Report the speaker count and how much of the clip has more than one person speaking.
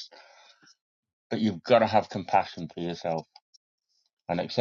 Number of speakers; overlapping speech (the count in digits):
1, no overlap